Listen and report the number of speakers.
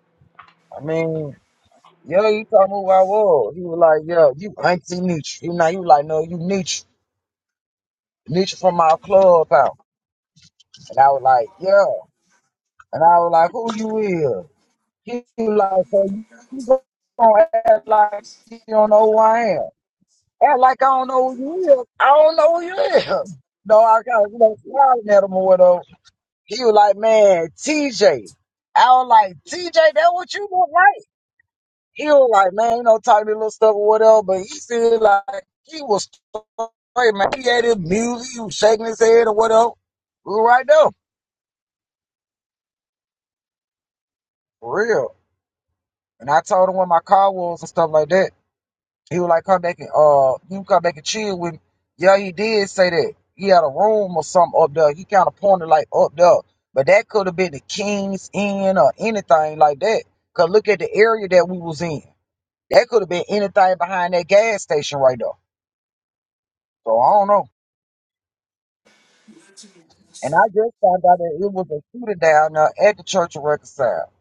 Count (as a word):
one